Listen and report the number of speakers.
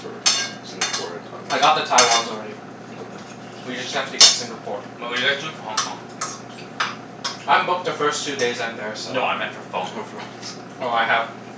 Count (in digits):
3